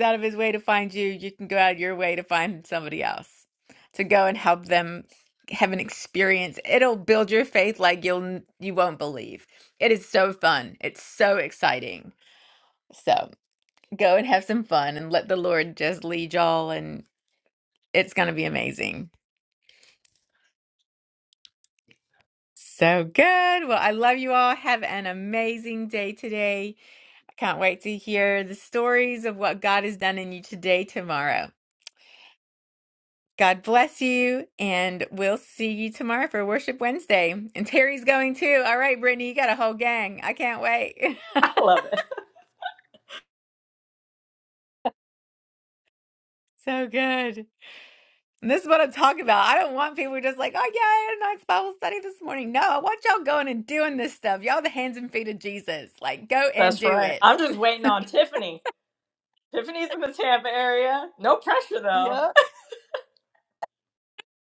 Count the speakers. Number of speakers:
2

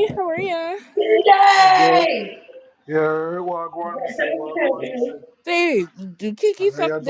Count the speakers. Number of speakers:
3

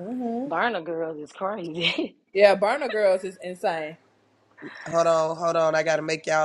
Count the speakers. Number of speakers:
3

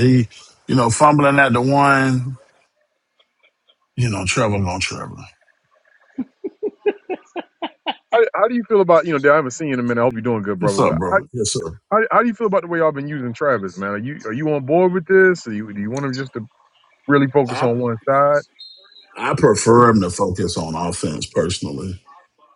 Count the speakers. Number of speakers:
2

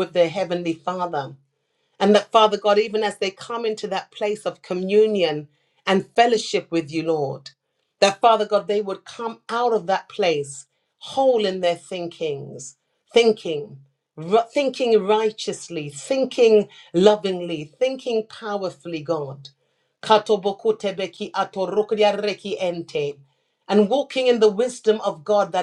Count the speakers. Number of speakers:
1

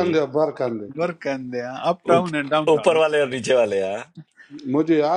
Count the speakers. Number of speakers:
3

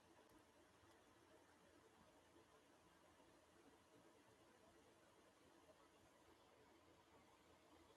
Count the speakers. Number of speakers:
0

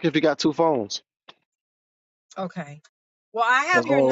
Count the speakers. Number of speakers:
2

